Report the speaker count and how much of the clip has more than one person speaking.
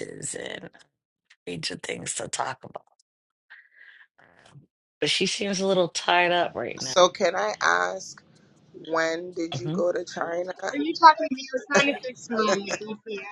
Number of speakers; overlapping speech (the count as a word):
three, about 4%